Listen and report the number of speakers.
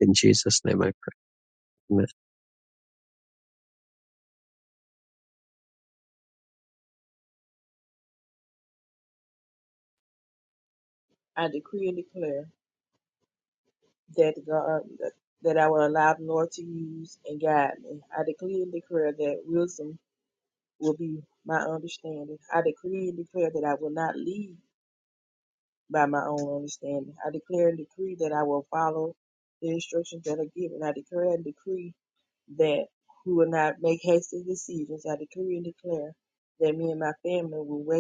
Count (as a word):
two